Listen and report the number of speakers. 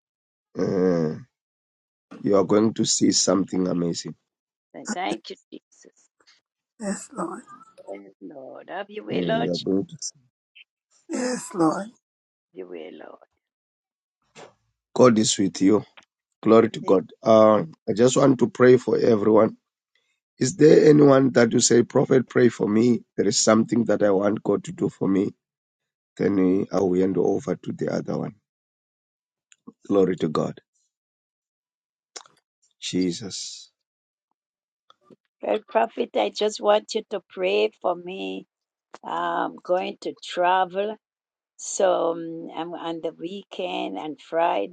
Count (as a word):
three